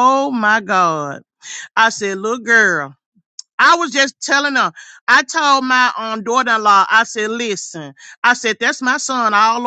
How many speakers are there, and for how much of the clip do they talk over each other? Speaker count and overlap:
1, no overlap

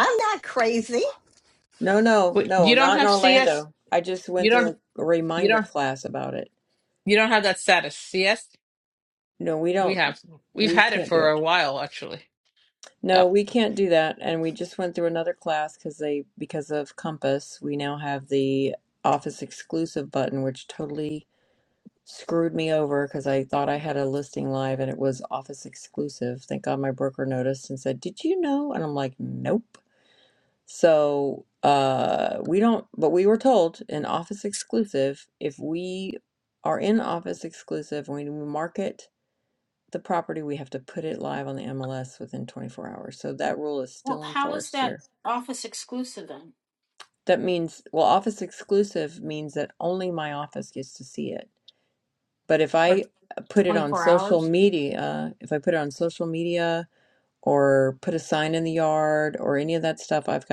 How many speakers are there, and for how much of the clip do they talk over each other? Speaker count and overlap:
4, about 7%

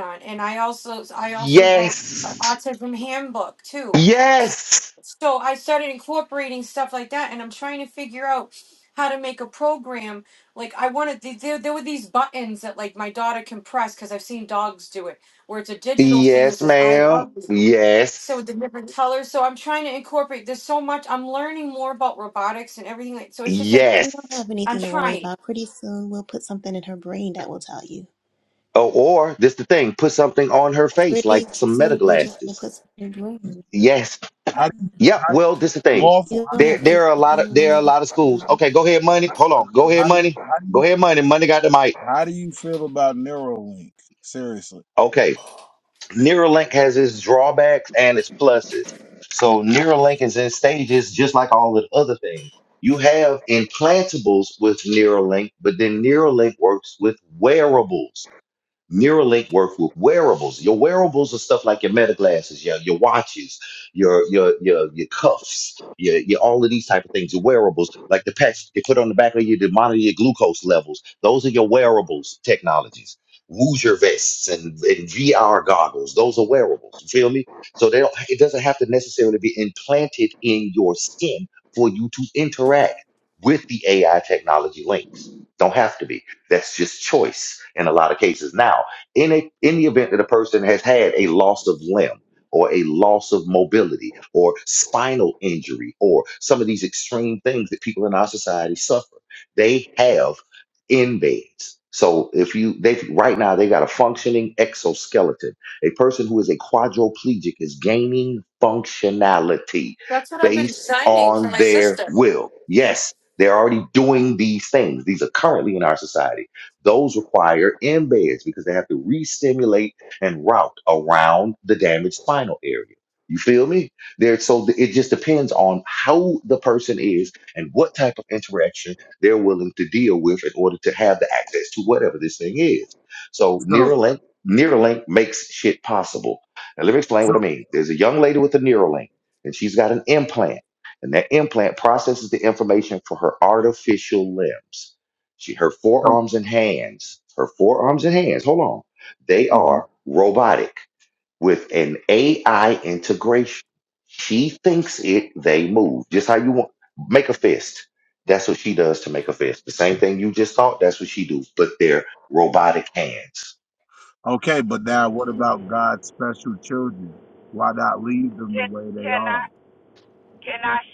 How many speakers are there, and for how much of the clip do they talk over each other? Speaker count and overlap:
5, about 6%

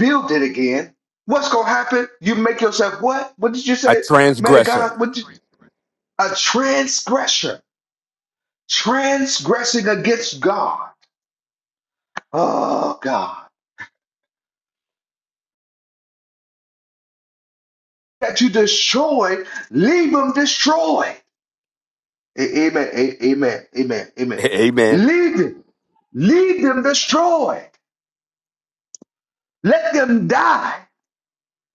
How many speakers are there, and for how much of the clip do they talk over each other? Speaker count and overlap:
2, about 3%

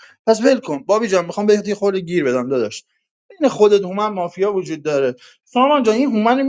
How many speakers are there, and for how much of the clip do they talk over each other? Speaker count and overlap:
1, no overlap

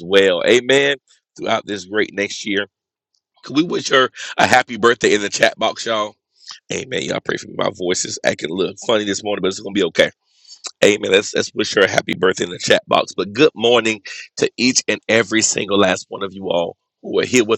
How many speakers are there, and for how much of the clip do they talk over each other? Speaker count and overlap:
1, no overlap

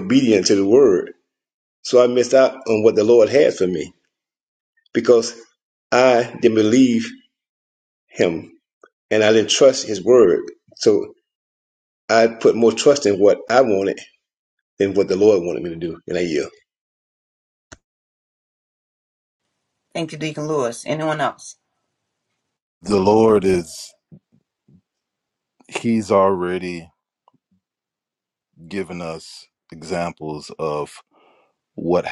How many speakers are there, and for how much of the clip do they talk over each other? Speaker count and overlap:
3, no overlap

